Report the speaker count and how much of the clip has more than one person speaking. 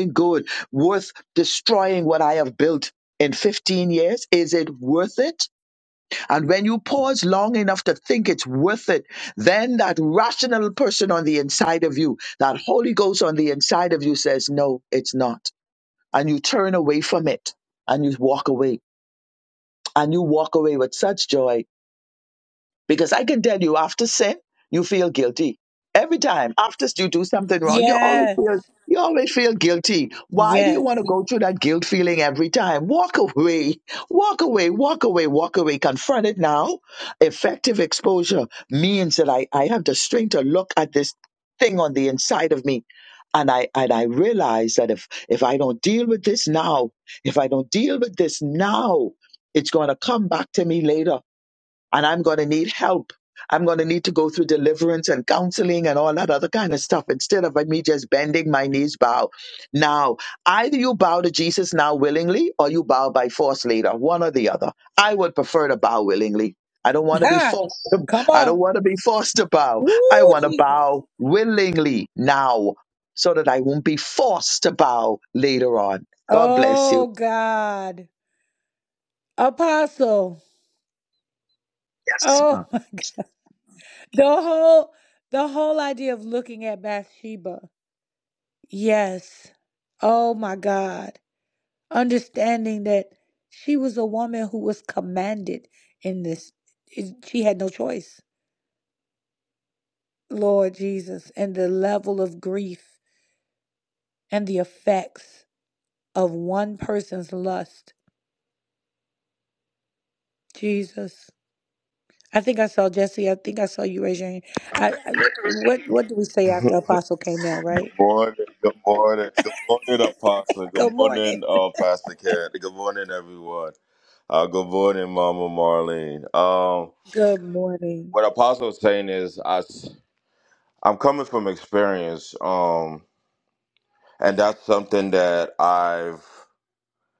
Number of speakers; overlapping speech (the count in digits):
3, about 3%